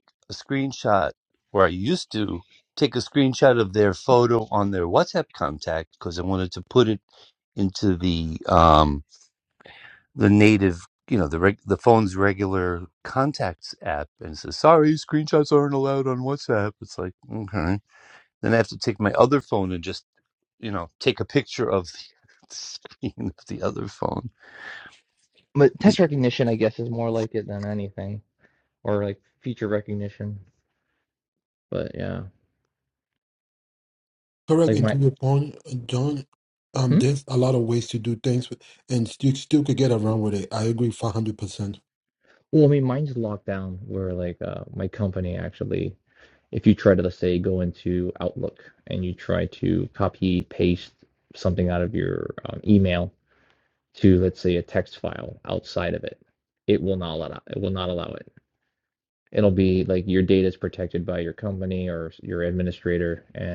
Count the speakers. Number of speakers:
3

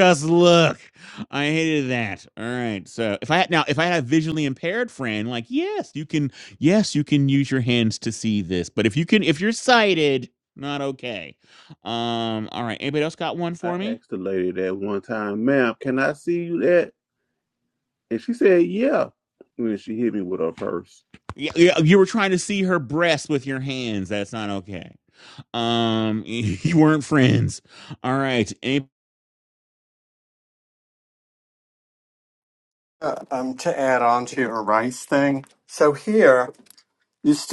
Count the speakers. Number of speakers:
3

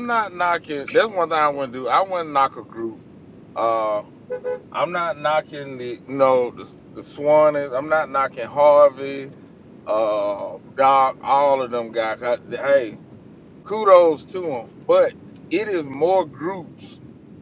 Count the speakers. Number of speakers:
1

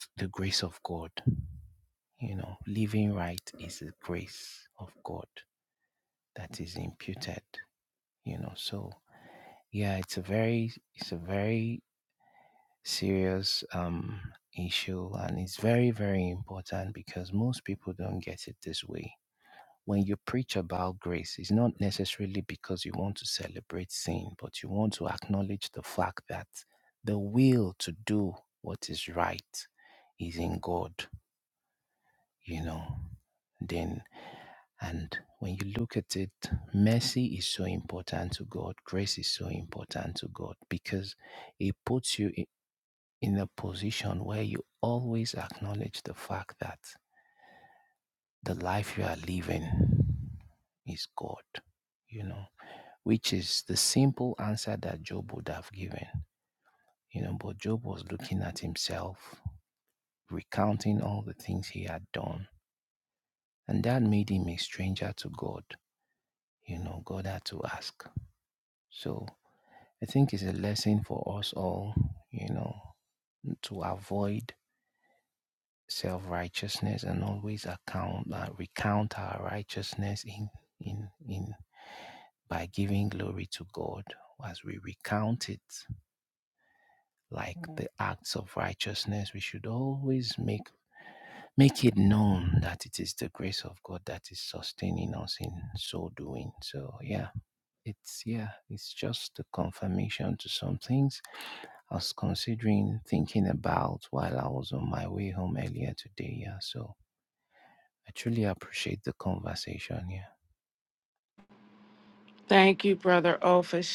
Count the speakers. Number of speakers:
2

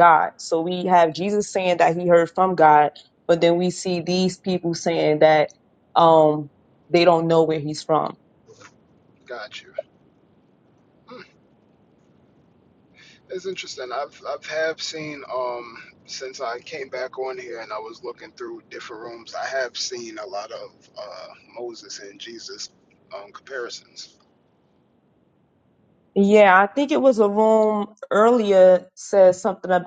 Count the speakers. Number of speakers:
2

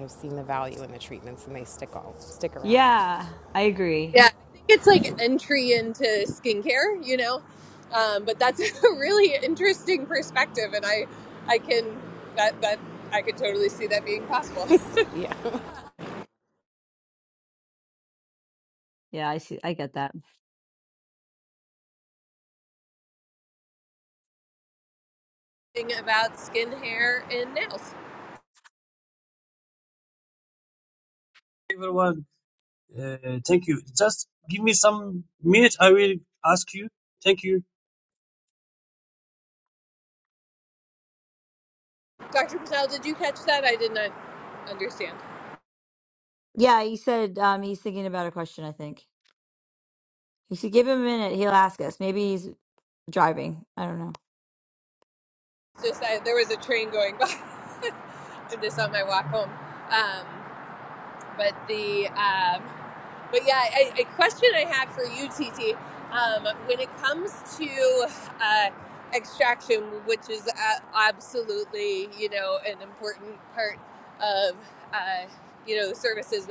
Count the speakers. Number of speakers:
4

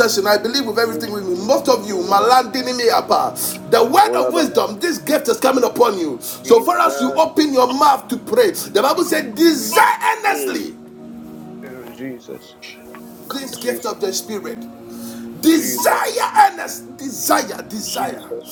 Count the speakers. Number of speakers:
2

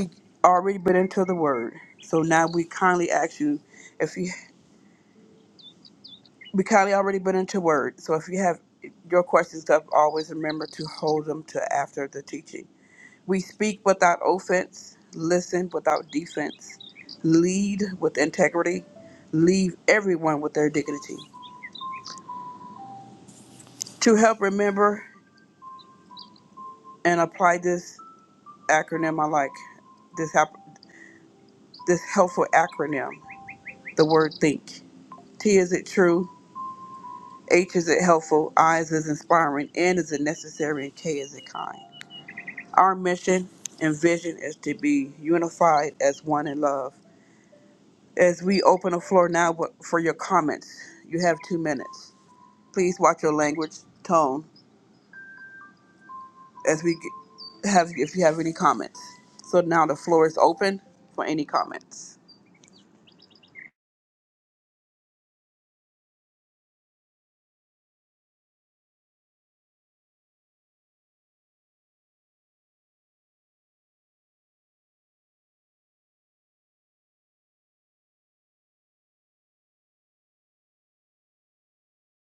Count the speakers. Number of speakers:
1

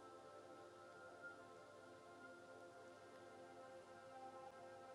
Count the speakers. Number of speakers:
0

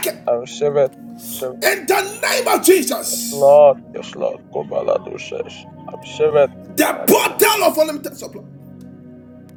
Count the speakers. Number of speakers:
2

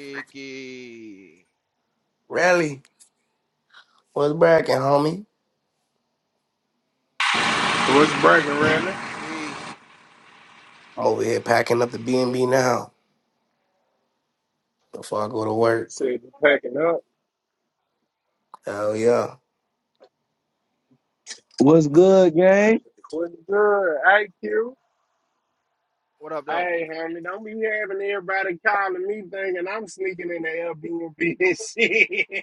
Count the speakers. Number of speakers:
4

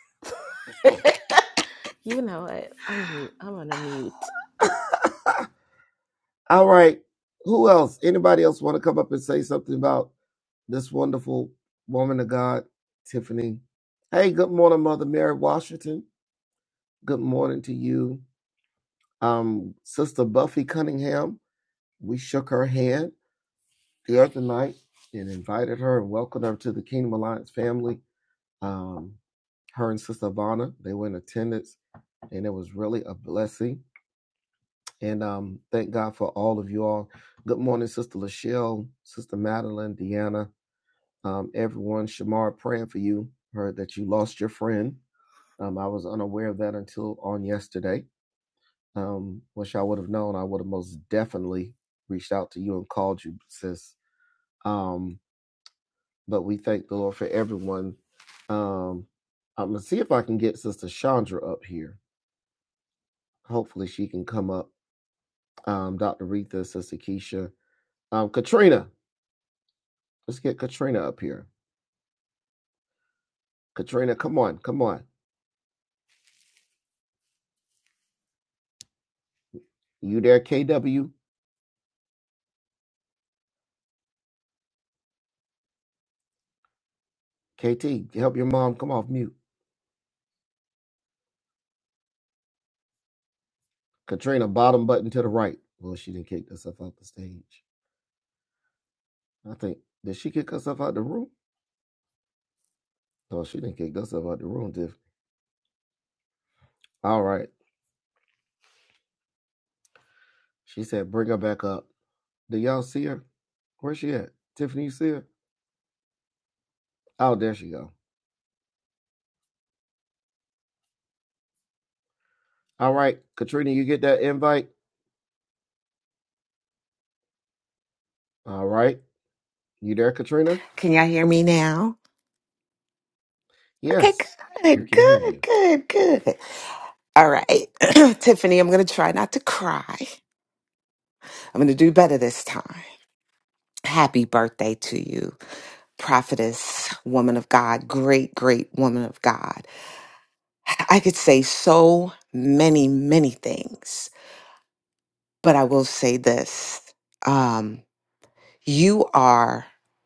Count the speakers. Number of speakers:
3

